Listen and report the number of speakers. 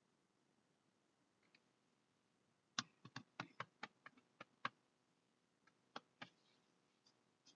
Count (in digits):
0